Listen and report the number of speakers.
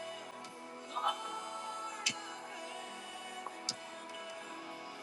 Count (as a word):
zero